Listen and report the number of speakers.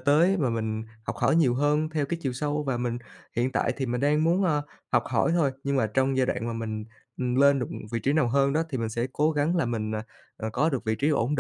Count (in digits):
1